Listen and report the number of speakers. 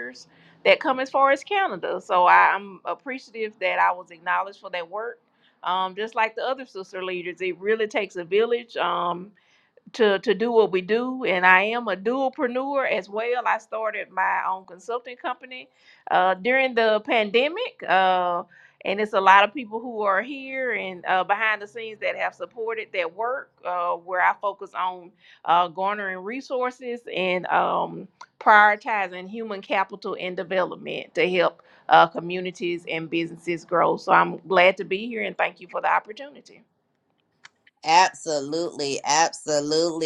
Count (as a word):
two